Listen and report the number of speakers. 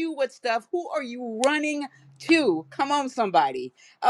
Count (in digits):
1